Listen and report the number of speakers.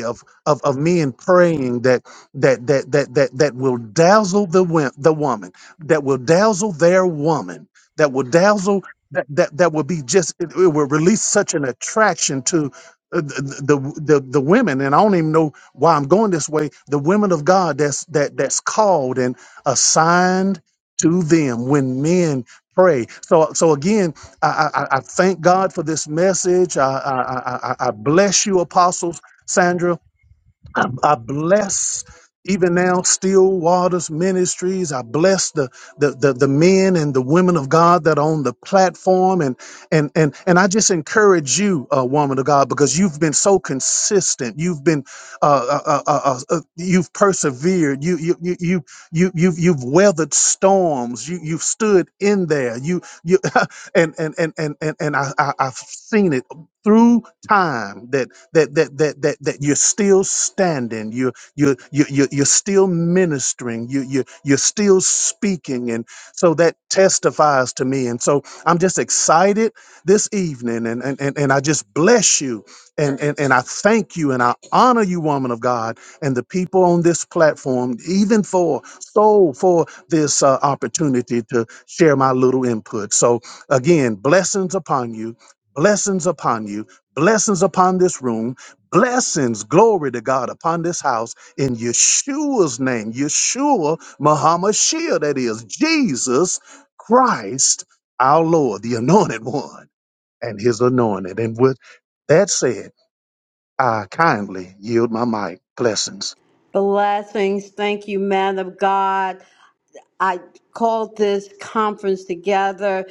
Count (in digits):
2